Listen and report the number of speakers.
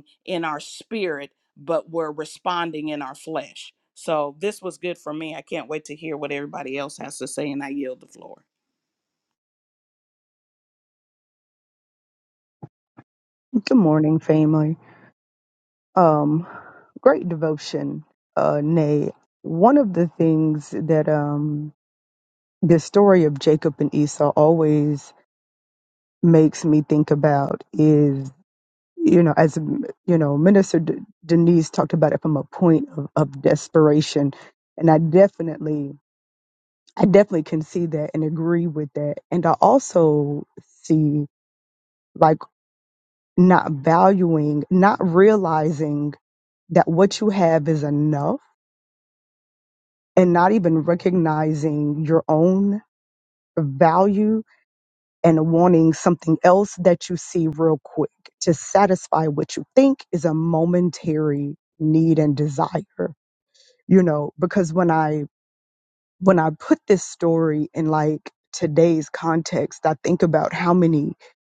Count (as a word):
two